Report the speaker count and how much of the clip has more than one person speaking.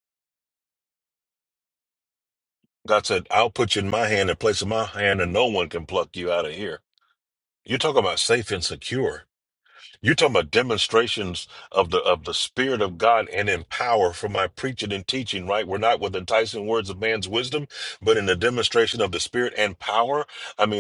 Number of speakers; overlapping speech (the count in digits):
1, no overlap